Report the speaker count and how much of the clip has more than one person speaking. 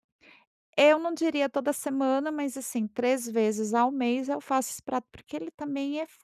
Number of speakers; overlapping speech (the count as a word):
one, no overlap